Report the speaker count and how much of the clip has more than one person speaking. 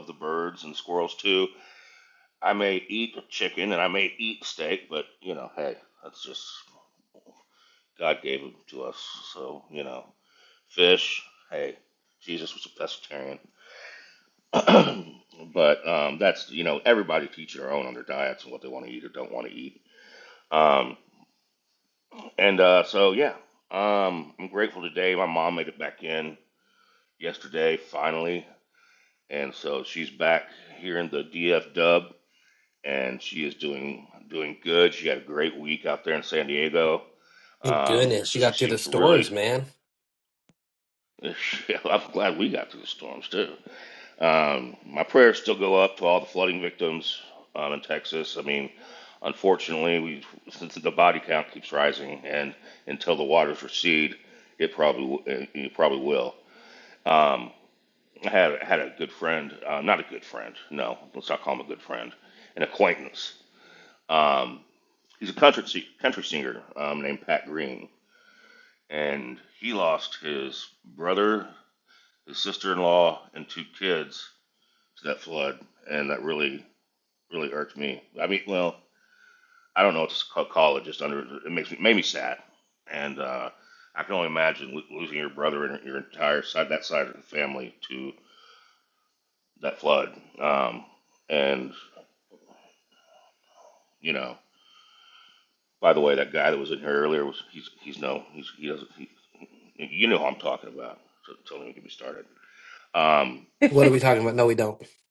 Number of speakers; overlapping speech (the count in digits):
2, about 2%